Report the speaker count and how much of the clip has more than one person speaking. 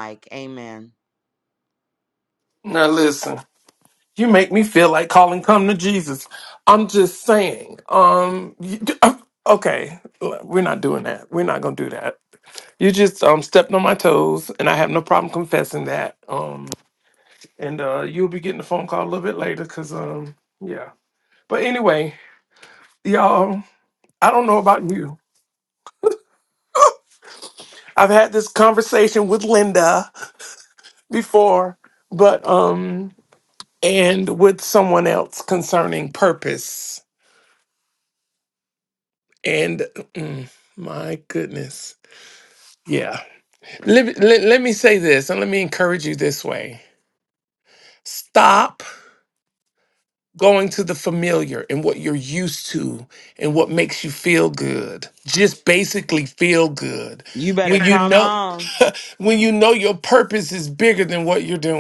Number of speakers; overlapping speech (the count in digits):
2, about 1%